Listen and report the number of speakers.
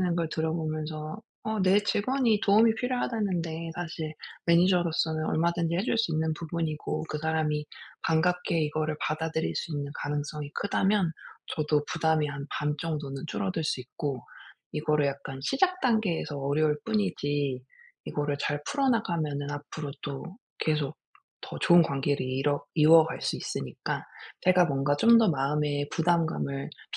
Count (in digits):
1